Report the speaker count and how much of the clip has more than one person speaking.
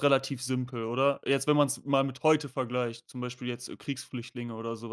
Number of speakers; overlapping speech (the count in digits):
1, no overlap